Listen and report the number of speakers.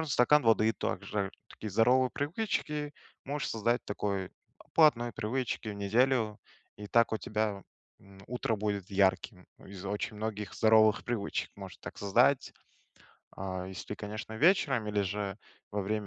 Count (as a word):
one